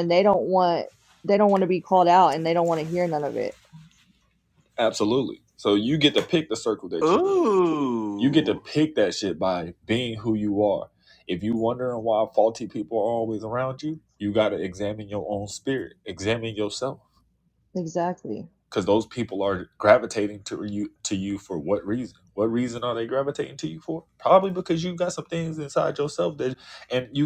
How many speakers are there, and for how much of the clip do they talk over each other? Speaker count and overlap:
three, about 1%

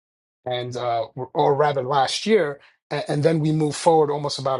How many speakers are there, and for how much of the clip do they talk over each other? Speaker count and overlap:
one, no overlap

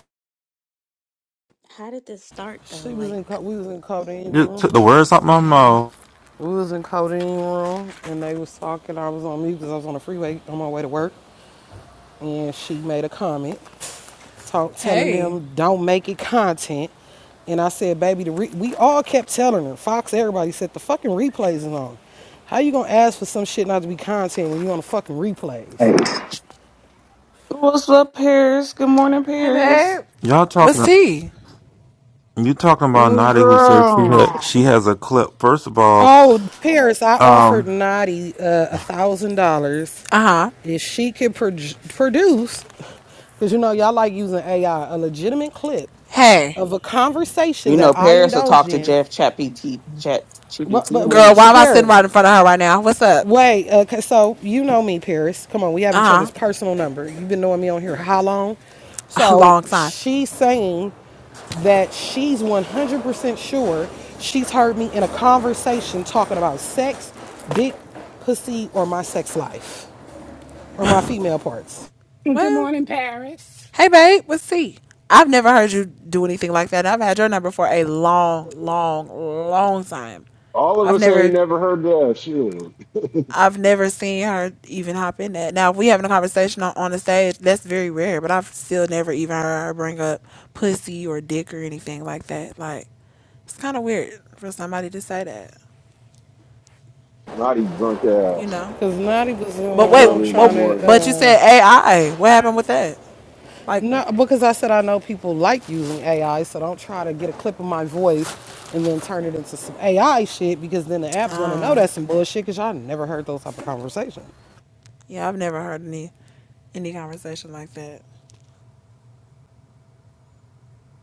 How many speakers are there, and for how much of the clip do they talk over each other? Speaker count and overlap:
seven, about 9%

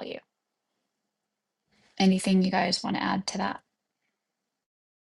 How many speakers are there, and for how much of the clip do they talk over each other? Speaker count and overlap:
one, no overlap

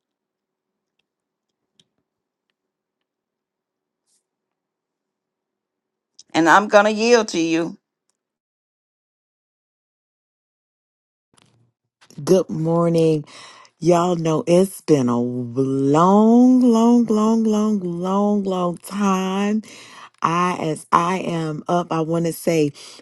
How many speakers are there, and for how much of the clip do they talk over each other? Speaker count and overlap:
two, no overlap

